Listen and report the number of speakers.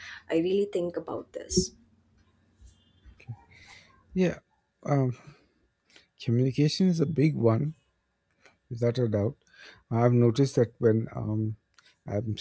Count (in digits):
2